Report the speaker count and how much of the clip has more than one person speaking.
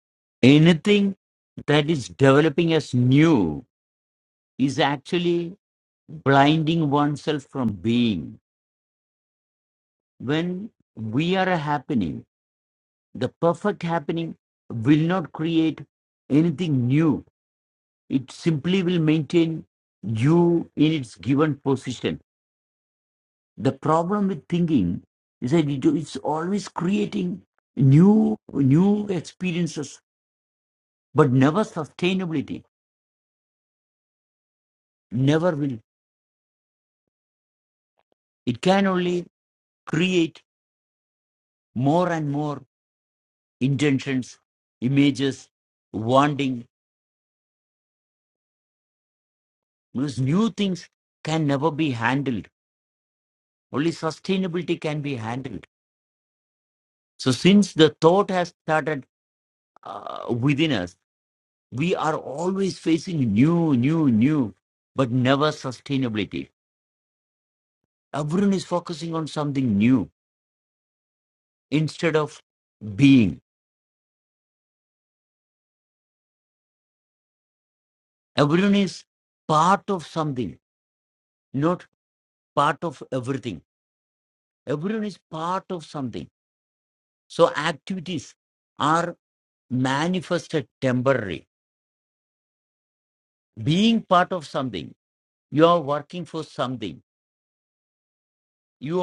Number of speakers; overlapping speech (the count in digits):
1, no overlap